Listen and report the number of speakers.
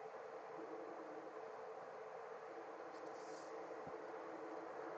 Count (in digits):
0